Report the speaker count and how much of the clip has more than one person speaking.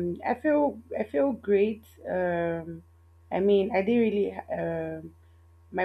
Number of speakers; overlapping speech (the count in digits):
1, no overlap